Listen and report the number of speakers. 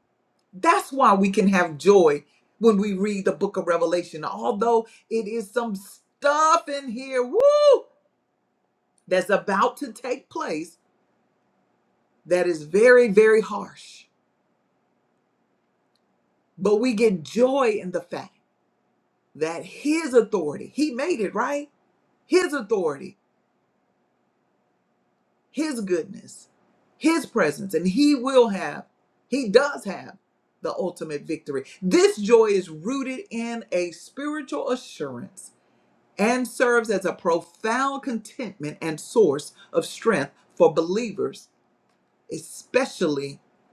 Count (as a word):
one